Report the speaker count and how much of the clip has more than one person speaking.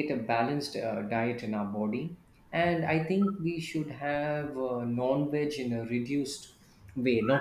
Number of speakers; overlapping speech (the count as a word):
one, no overlap